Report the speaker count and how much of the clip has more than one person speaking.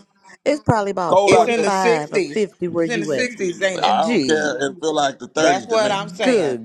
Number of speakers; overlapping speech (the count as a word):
three, about 53%